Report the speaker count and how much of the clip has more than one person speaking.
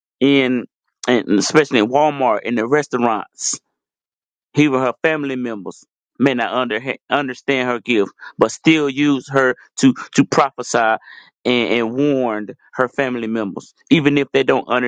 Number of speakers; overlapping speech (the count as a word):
one, no overlap